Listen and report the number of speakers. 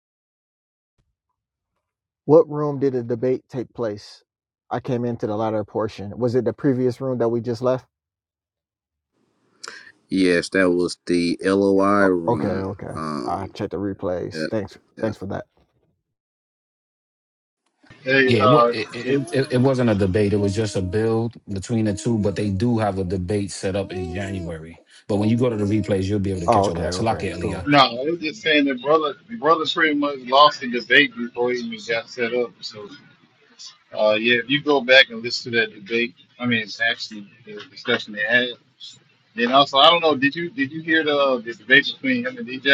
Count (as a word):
four